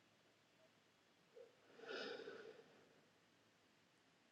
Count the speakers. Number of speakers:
0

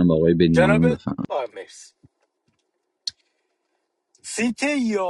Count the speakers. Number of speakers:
2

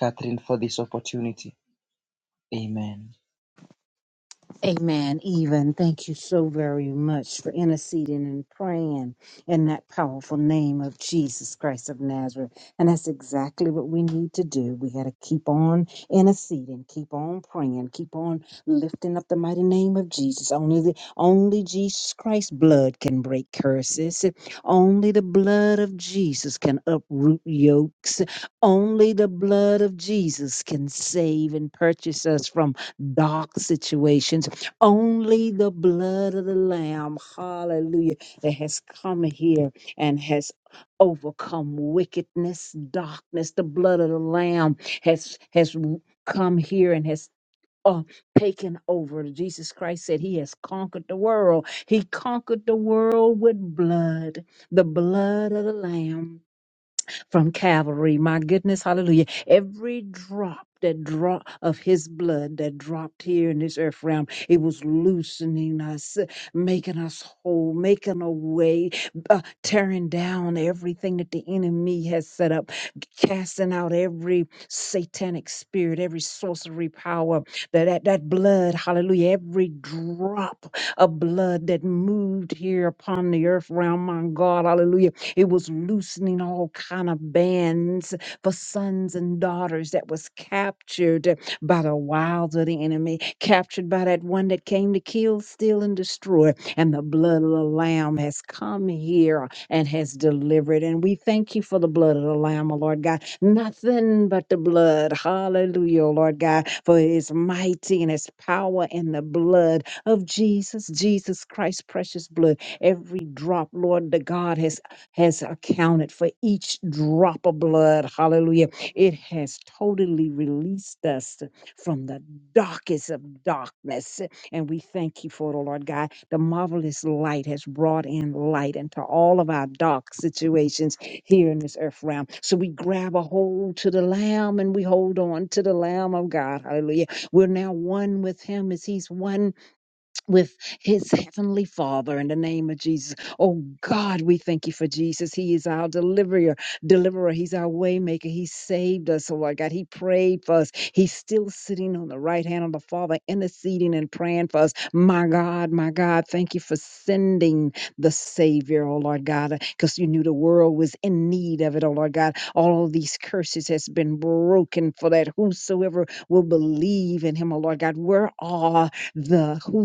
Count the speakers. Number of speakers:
2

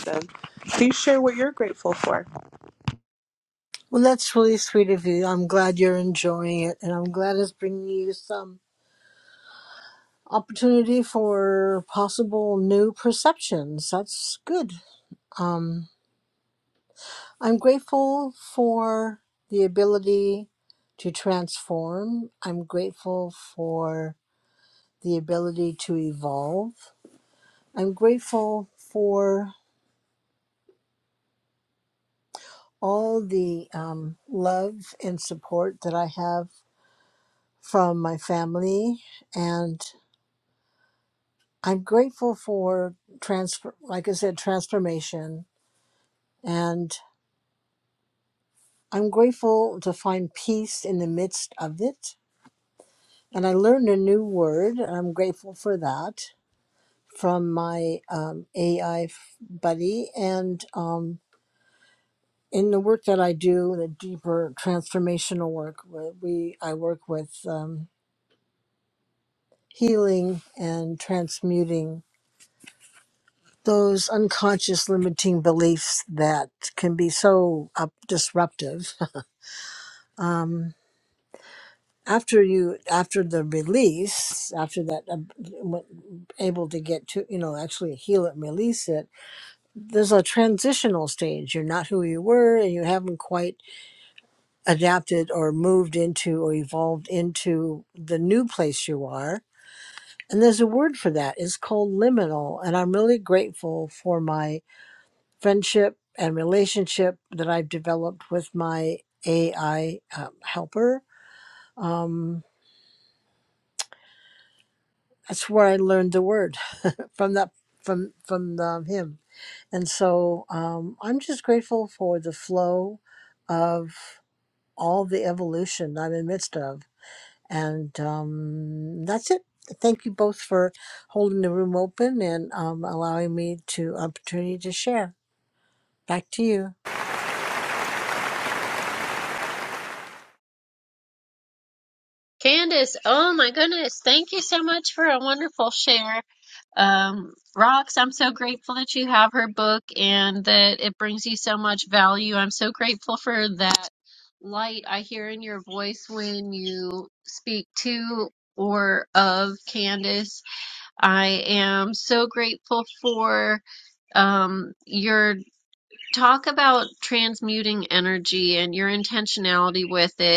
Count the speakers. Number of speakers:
3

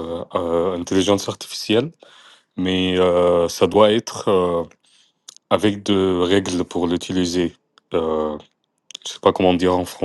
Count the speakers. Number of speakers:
1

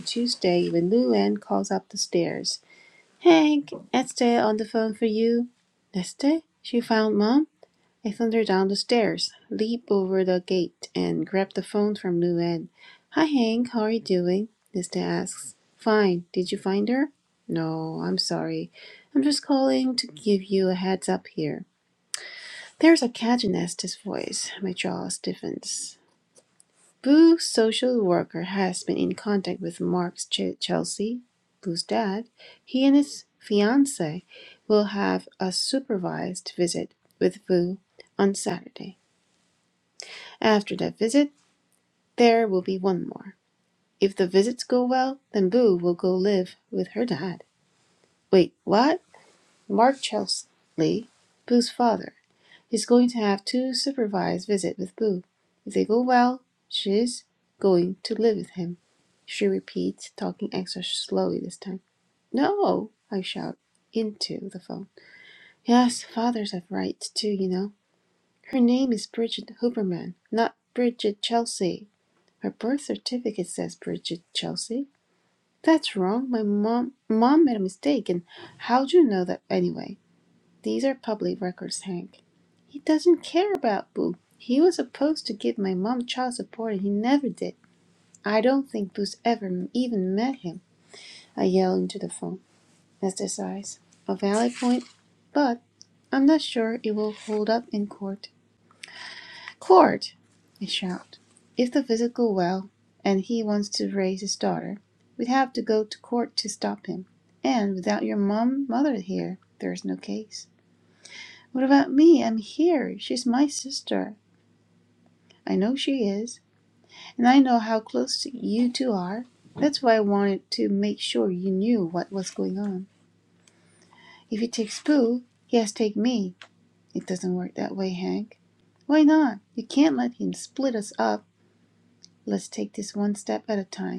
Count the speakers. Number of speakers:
1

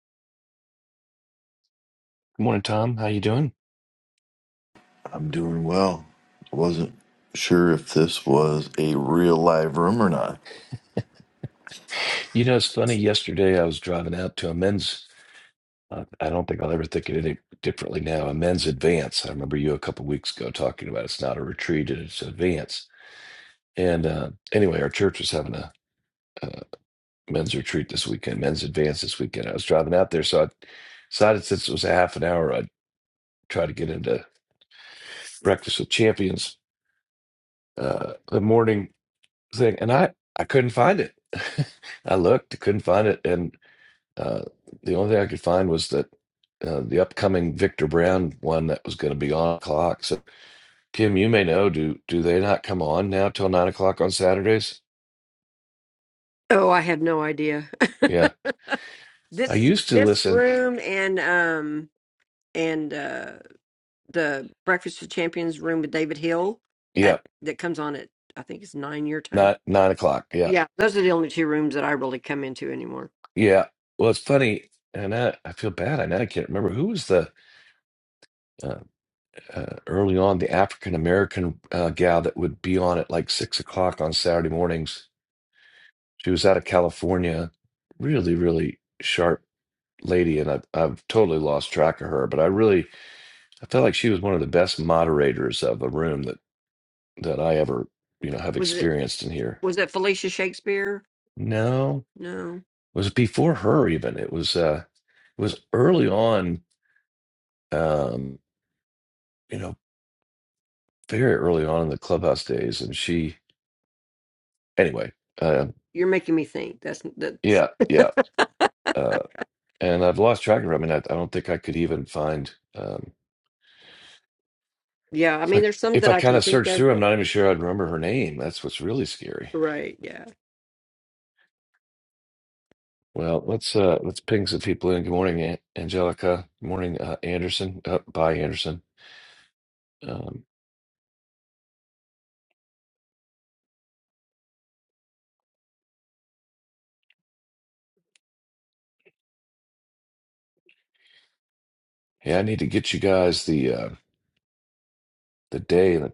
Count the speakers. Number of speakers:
3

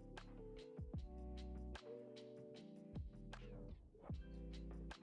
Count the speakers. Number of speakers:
0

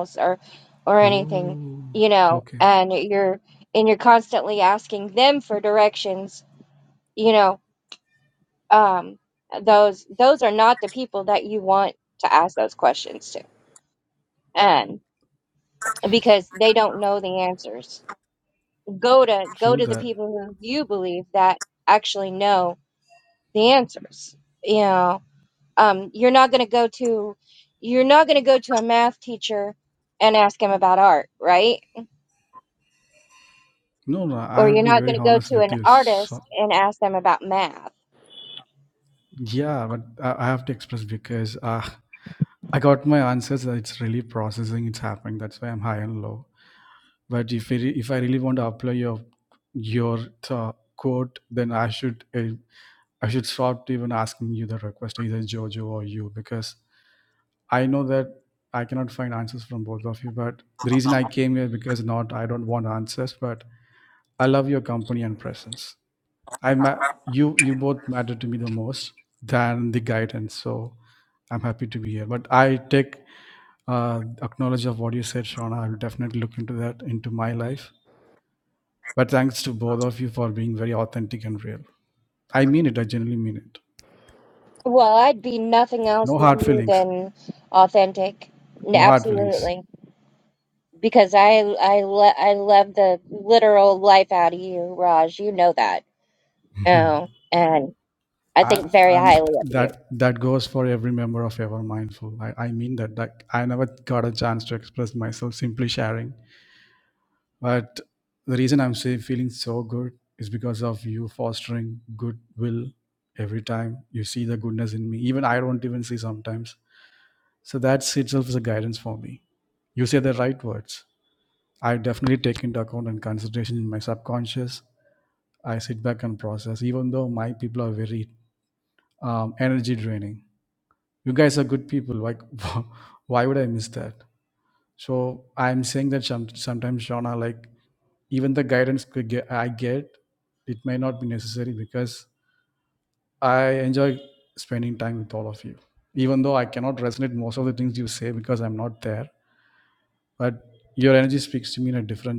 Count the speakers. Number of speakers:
2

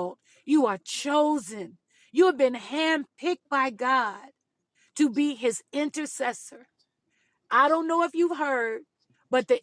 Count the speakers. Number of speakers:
1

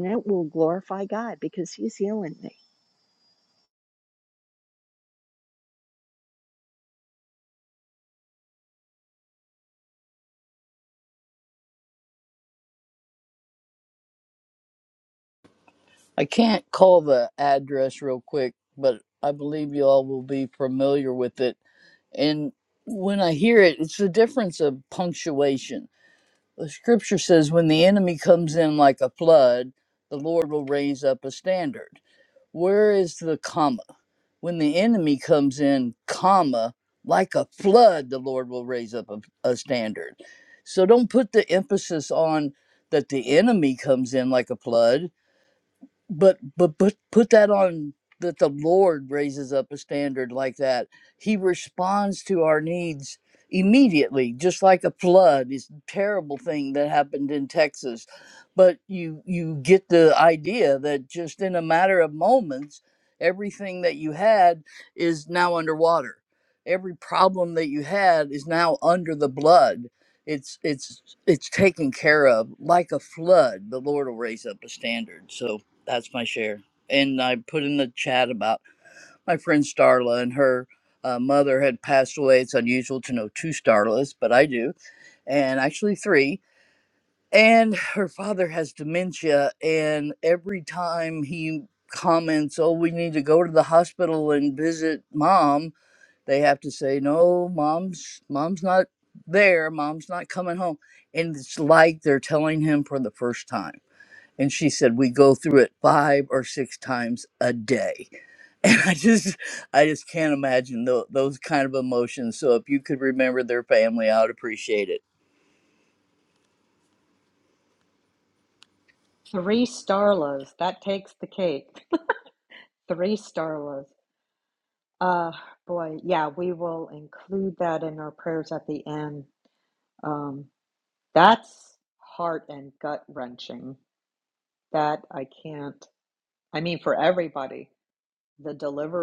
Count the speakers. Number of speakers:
3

